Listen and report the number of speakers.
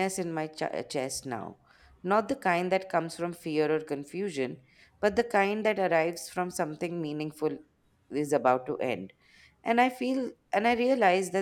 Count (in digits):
1